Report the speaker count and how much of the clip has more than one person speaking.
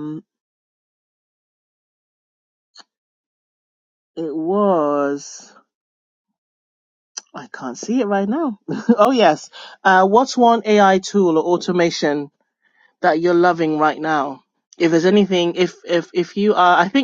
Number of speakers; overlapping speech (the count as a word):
one, no overlap